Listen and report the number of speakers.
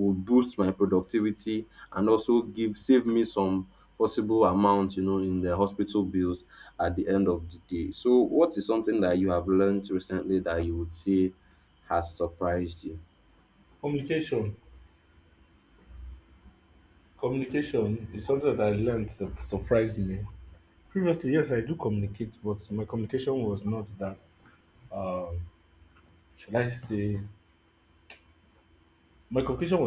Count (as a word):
two